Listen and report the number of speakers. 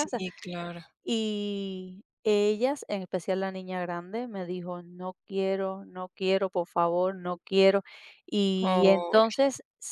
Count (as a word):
two